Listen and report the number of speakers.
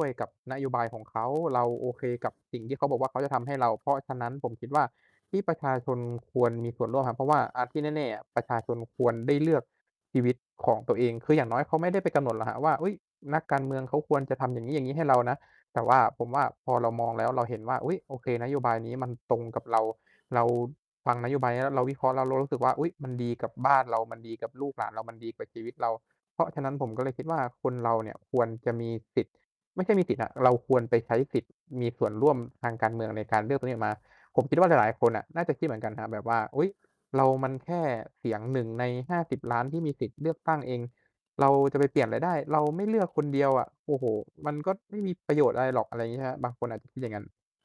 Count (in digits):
1